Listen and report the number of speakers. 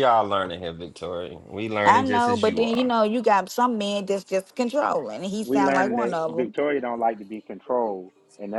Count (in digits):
3